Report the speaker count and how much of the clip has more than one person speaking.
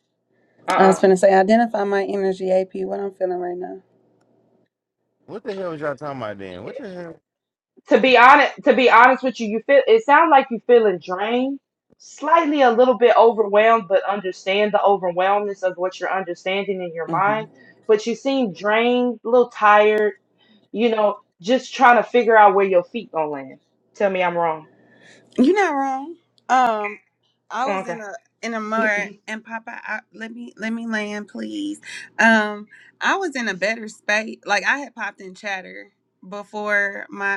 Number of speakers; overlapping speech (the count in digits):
3, about 3%